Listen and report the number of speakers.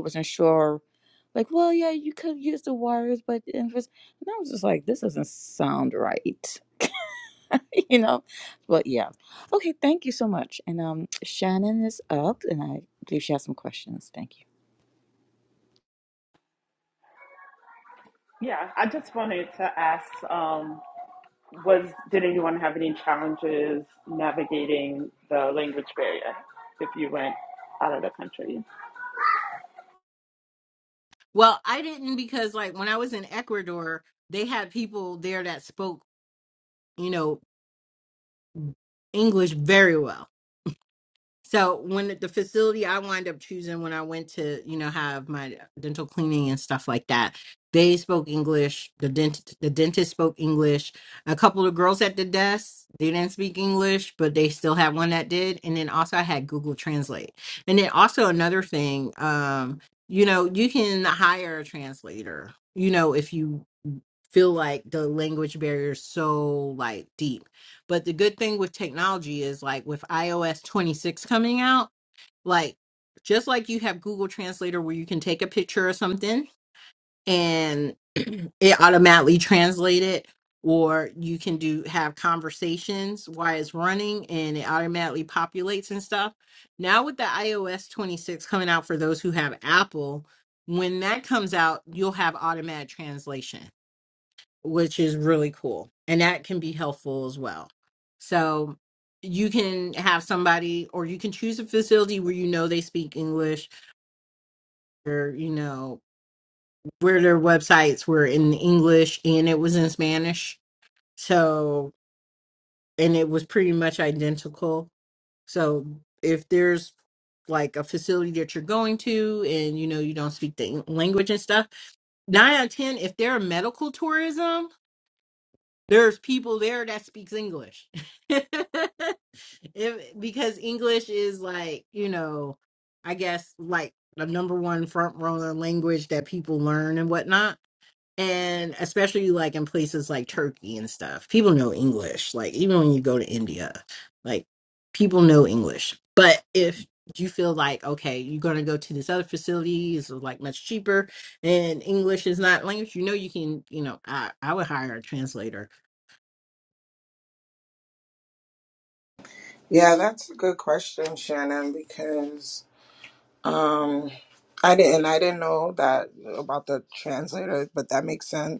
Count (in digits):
4